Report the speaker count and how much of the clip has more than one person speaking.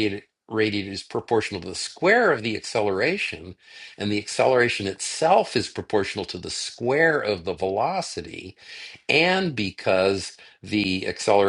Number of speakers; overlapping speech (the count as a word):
one, no overlap